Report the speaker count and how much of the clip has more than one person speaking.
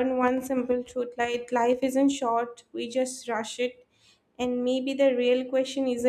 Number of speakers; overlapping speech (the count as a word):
one, no overlap